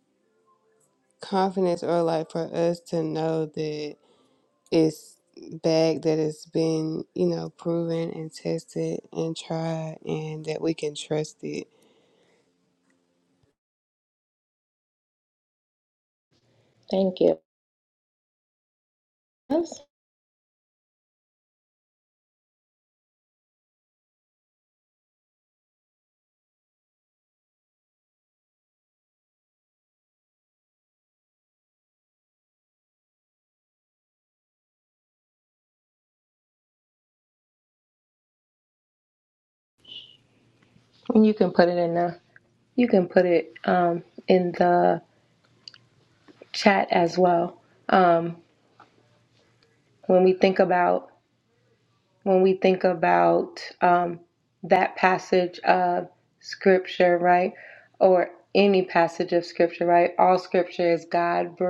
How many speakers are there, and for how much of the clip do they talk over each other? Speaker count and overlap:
2, no overlap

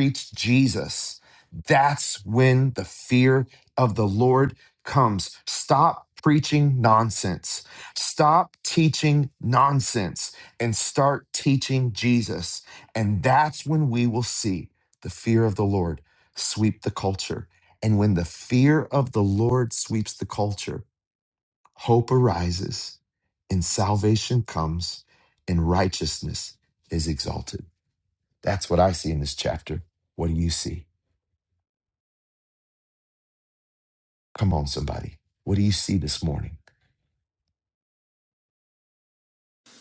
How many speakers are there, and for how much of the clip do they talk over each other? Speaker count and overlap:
1, no overlap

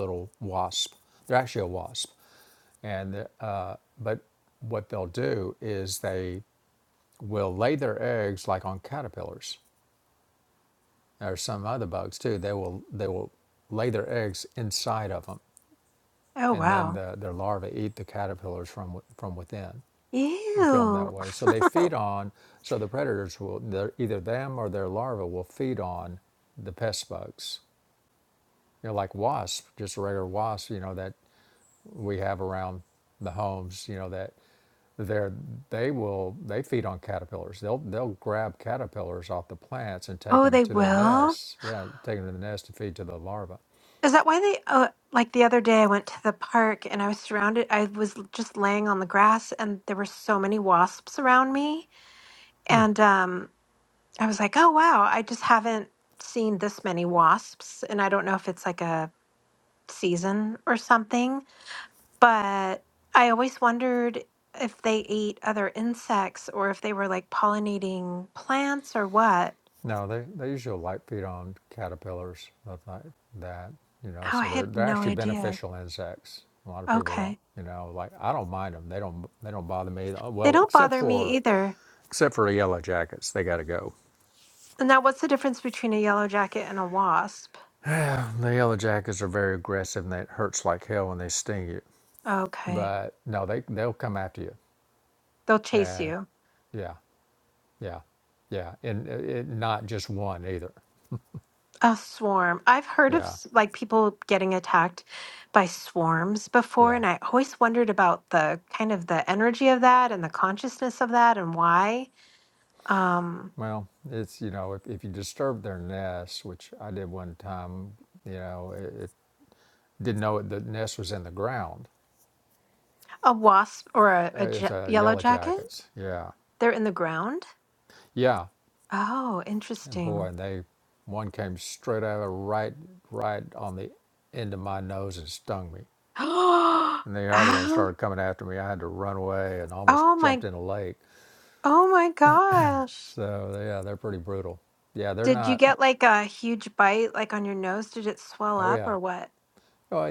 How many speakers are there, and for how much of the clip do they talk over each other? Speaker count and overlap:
2, about 6%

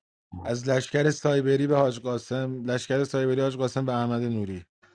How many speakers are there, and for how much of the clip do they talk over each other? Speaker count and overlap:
1, no overlap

